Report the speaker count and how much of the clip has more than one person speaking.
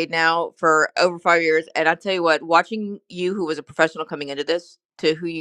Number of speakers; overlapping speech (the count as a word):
one, no overlap